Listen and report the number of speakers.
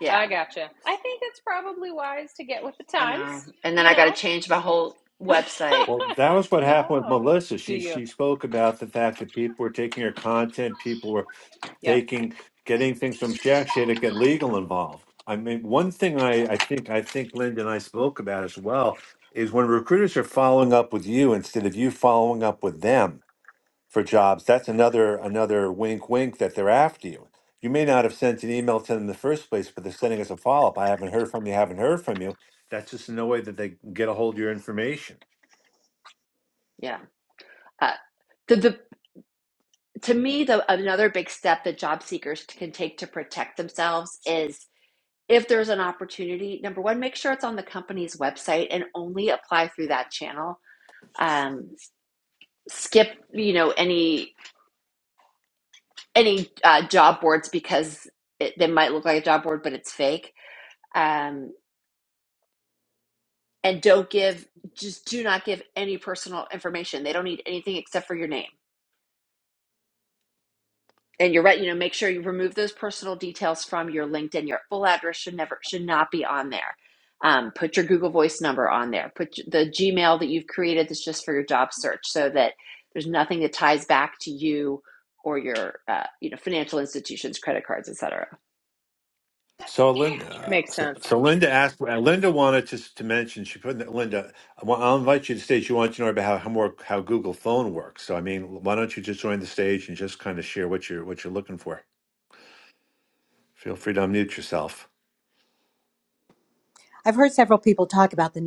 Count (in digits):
4